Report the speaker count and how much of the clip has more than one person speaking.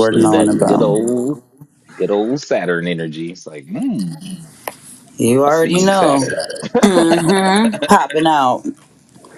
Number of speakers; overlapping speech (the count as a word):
two, about 18%